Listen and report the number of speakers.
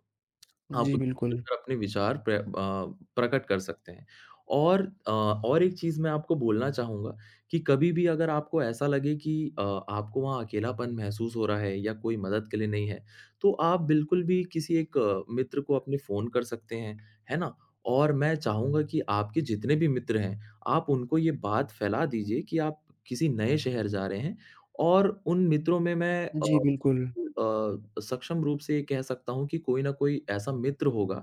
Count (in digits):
2